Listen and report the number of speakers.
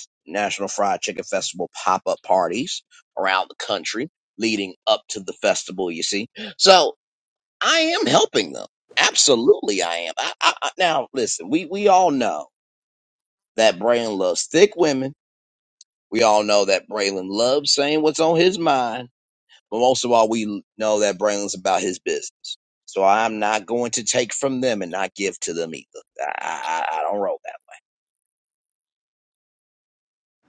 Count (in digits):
1